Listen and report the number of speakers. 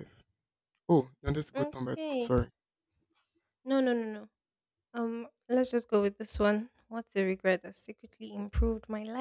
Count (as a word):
two